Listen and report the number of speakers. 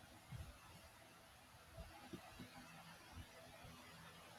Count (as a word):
zero